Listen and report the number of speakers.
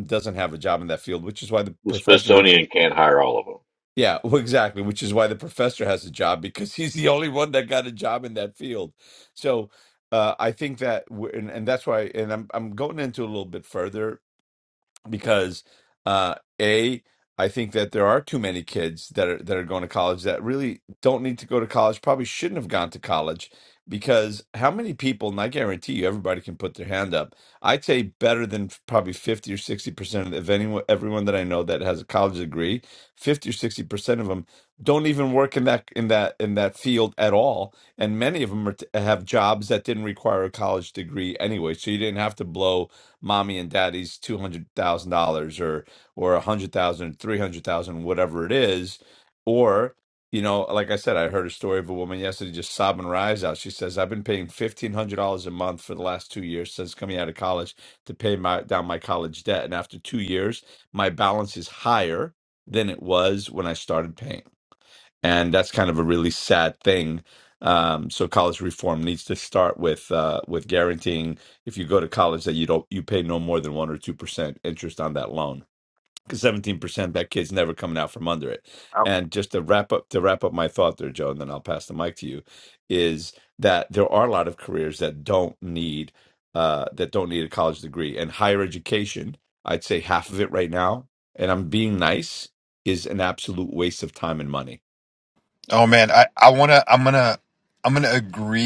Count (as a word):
three